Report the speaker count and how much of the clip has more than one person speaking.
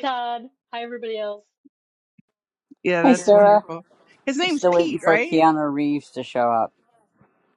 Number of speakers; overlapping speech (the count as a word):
three, about 21%